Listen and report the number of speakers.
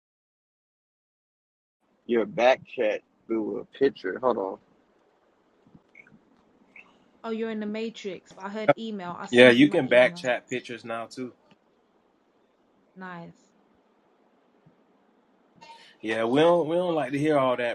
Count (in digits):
3